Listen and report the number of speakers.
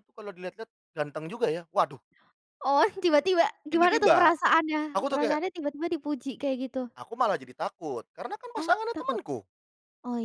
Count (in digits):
2